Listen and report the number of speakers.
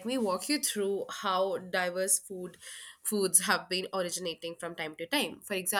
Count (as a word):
one